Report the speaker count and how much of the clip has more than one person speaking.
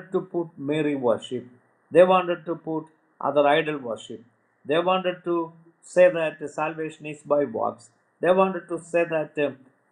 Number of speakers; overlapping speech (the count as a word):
one, no overlap